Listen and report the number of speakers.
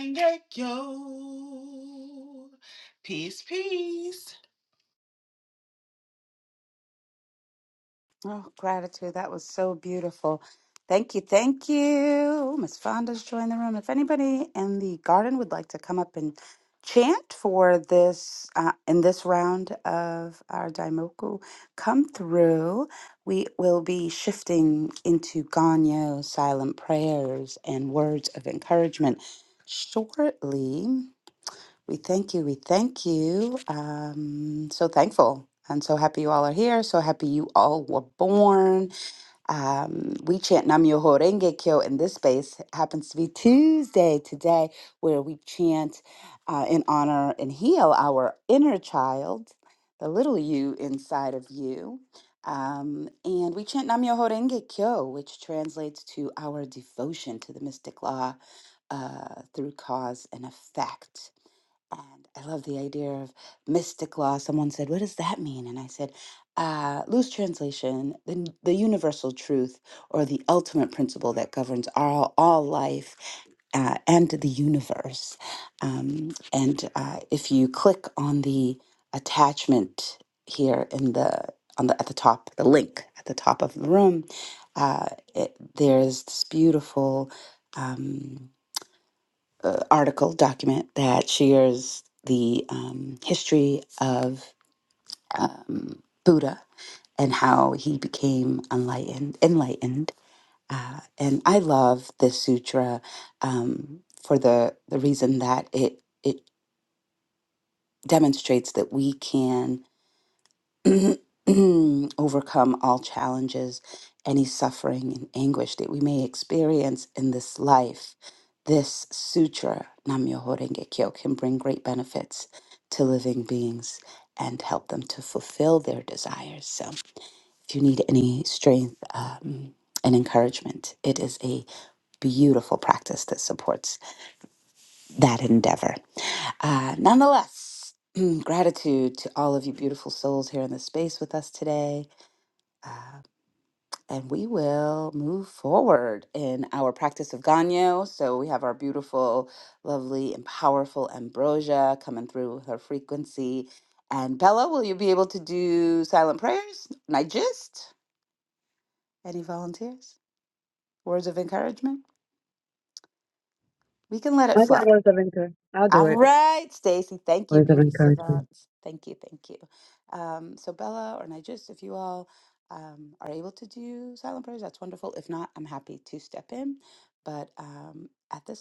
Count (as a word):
three